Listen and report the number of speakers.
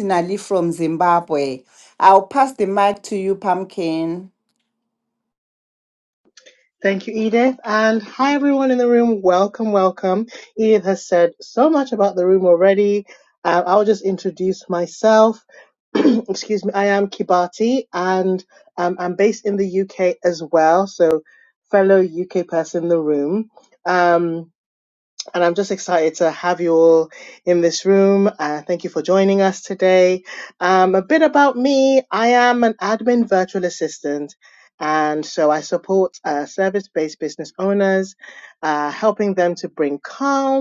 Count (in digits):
2